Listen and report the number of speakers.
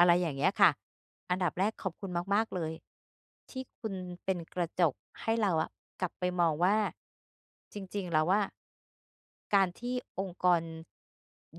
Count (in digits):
1